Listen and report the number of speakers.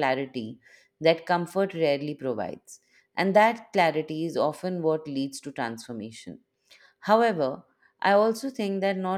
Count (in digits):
1